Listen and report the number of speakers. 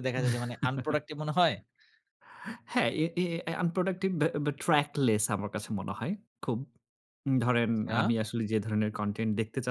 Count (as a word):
two